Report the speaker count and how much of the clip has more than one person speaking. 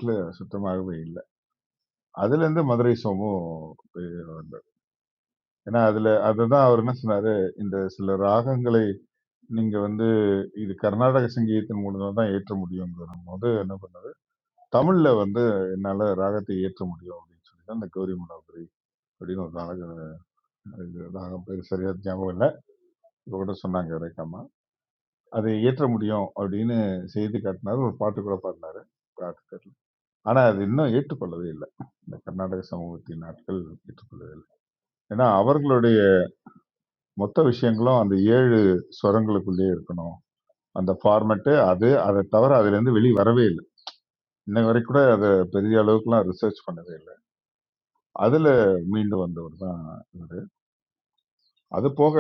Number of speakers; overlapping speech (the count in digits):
1, no overlap